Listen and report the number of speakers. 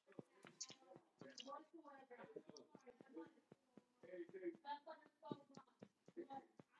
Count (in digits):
0